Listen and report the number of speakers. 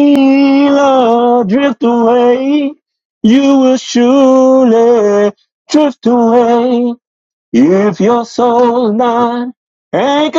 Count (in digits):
1